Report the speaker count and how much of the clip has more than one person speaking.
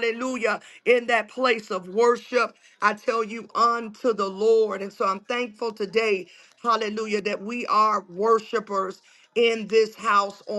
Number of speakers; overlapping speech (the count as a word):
one, no overlap